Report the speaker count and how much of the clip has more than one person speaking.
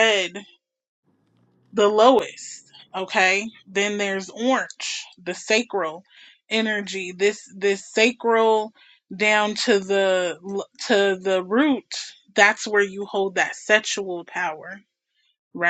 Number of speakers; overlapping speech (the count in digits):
1, no overlap